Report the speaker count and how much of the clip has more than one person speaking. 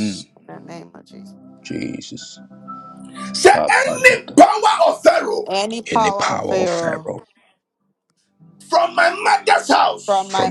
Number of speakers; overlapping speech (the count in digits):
3, about 27%